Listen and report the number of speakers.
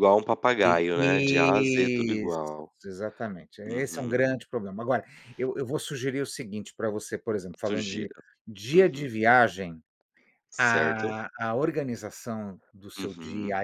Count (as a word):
two